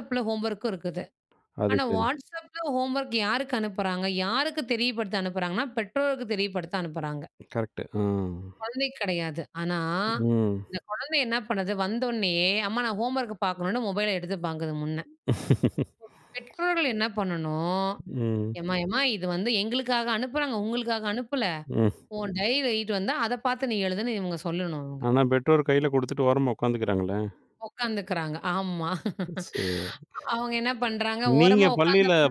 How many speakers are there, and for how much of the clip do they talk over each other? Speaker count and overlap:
two, about 4%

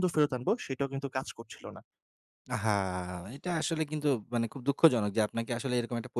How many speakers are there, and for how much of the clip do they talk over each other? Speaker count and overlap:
two, no overlap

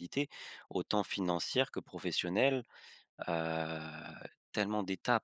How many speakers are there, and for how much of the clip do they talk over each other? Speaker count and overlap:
one, no overlap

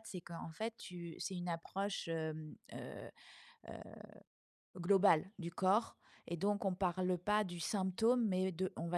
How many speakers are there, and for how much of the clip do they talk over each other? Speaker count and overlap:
one, no overlap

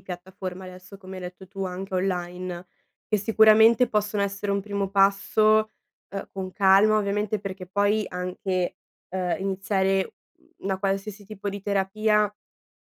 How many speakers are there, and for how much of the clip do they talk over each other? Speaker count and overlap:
one, no overlap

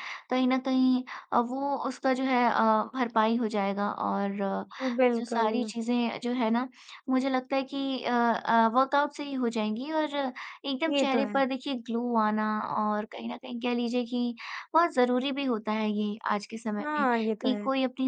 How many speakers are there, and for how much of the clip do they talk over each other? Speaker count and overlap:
two, about 9%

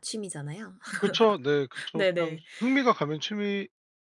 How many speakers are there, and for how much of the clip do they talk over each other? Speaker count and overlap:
two, about 12%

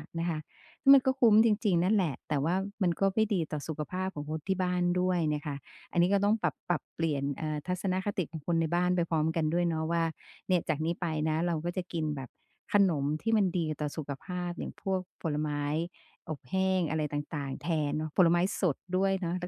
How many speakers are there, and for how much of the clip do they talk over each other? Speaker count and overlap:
one, no overlap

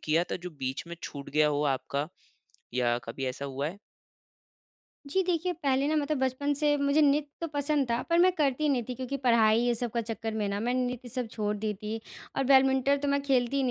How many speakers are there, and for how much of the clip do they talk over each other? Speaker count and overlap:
two, under 1%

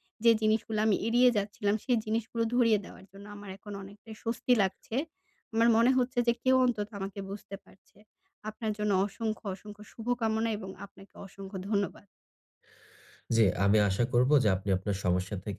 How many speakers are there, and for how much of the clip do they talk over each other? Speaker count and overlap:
two, no overlap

